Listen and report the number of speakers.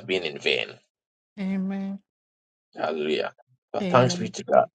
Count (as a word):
two